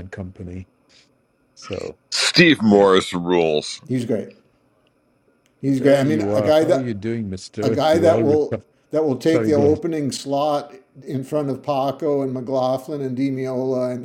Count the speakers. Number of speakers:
3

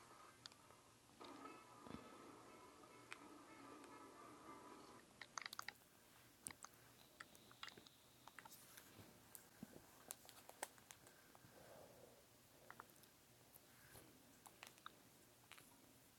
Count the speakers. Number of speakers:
0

